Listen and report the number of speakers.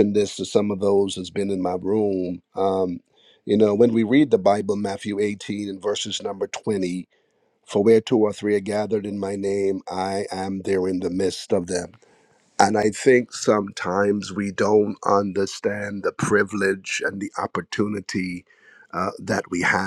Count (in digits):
1